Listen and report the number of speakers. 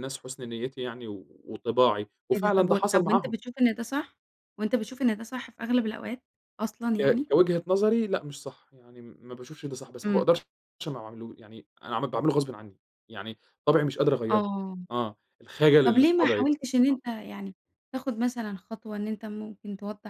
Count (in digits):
2